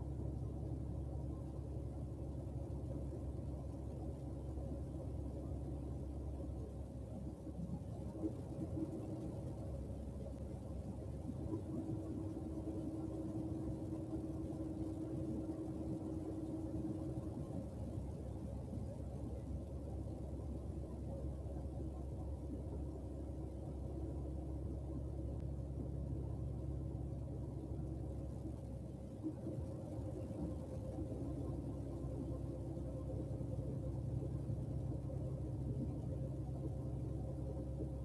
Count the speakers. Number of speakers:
0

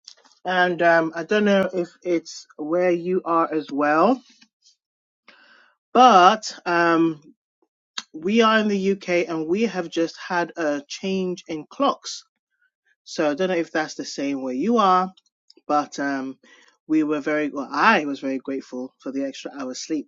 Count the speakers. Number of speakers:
1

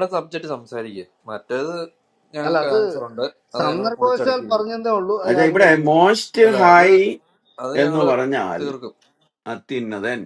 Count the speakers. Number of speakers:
3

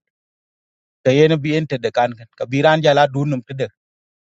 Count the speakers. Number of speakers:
1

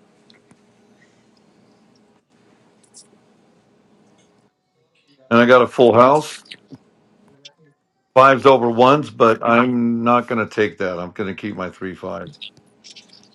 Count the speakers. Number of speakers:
1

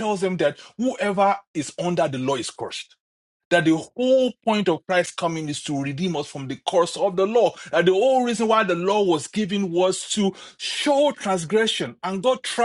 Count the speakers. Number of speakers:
1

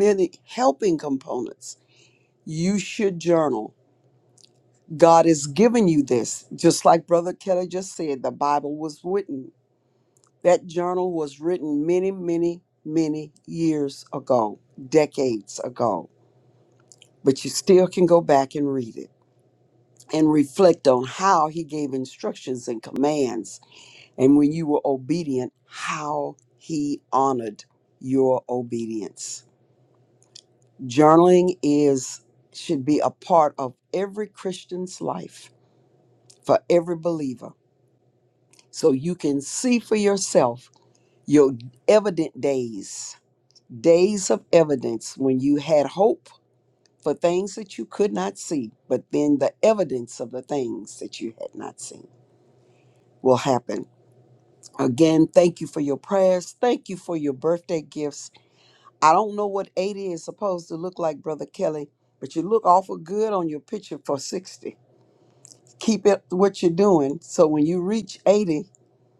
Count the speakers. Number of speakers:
1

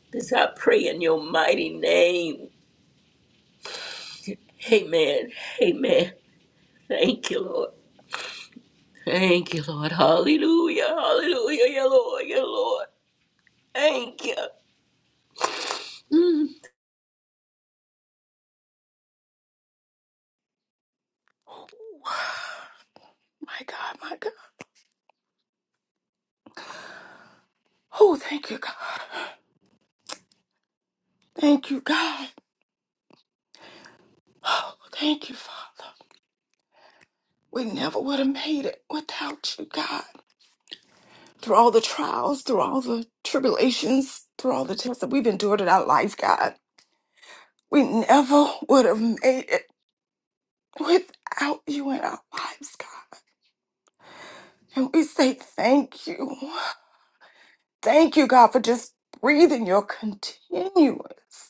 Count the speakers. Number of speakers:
2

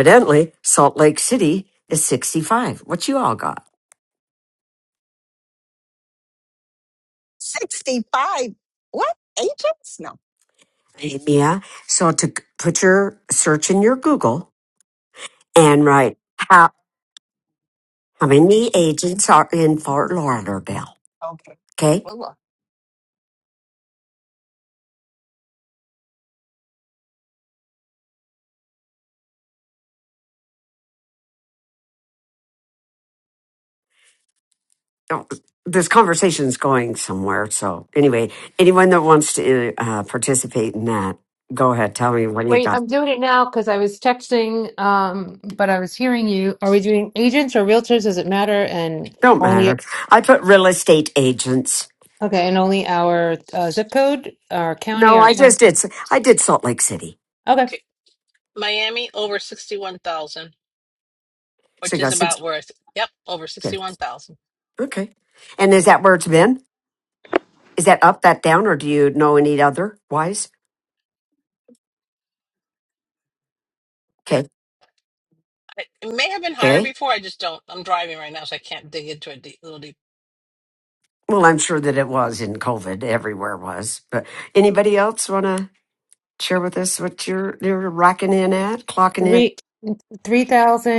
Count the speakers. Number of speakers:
4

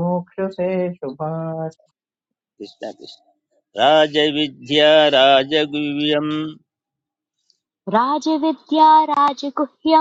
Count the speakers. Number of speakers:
3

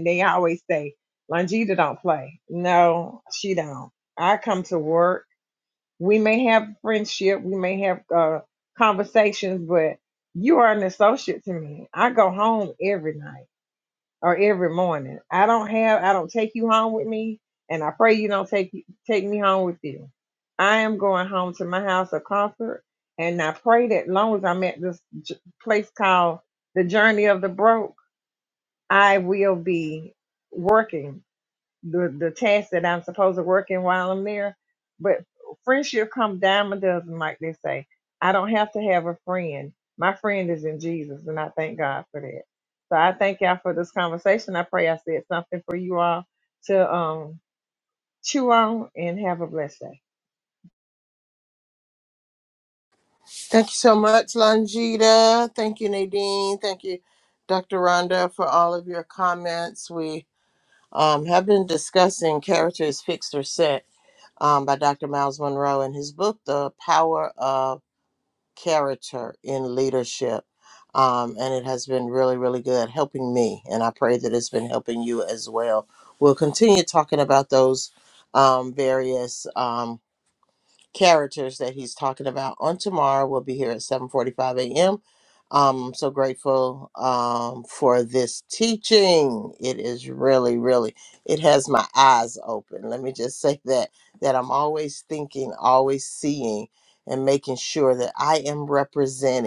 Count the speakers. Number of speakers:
2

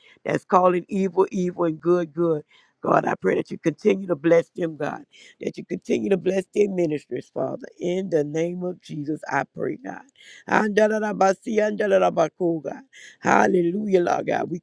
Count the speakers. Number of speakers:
1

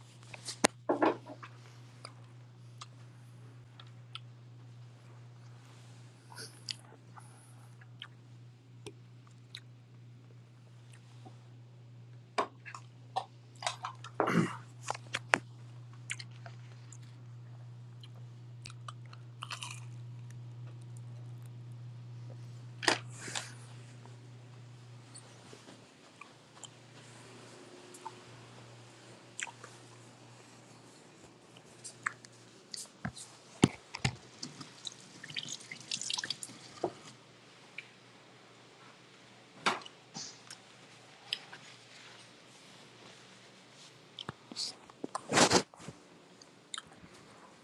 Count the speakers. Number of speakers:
0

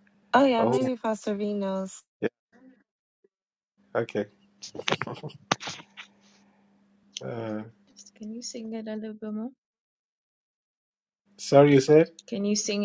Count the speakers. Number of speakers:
3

